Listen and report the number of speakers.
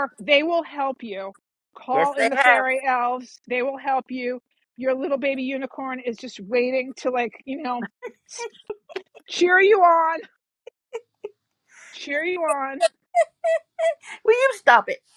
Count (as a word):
two